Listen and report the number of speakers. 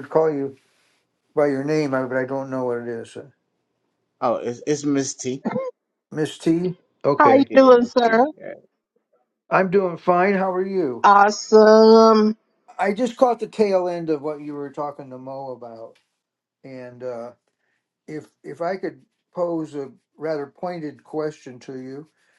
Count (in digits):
3